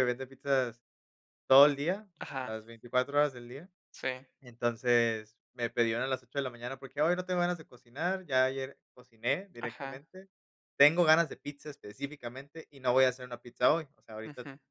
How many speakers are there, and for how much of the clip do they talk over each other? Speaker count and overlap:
two, about 4%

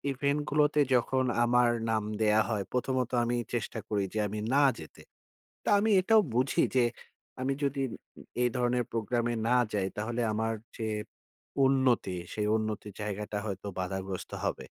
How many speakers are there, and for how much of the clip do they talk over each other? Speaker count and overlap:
one, no overlap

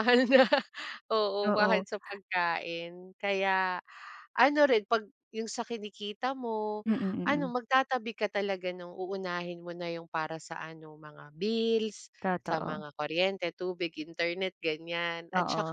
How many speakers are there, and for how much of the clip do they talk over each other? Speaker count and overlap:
two, about 9%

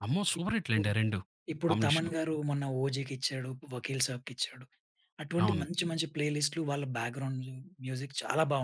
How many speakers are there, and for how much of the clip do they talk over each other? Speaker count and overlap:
two, about 11%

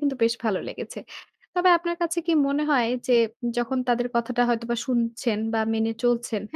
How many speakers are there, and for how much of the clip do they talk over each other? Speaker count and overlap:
one, no overlap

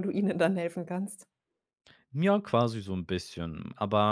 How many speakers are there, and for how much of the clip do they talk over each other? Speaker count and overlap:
two, no overlap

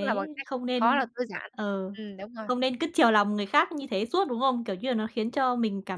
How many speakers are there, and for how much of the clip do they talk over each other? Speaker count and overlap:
two, about 12%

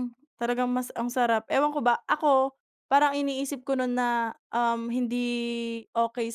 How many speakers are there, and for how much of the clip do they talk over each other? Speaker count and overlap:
one, no overlap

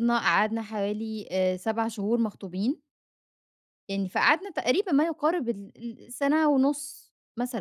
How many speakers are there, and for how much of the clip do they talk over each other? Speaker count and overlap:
one, no overlap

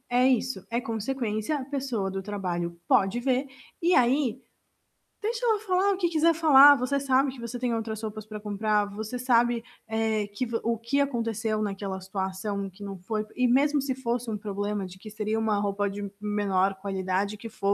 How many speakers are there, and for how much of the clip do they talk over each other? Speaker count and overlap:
one, no overlap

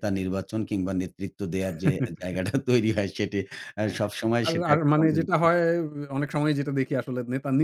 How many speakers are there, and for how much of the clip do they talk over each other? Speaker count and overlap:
two, about 17%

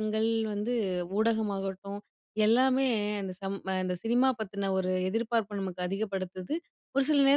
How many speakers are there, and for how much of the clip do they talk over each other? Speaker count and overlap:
one, no overlap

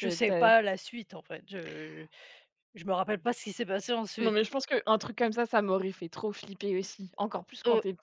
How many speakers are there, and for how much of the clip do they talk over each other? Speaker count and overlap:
two, about 10%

